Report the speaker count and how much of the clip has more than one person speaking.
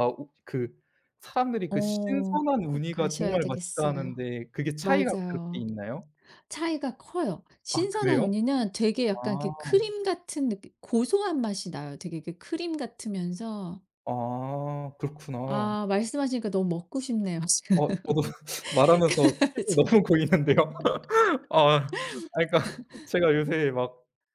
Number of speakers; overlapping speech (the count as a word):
two, about 23%